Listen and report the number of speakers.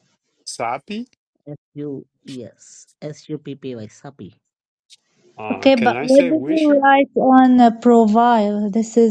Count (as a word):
three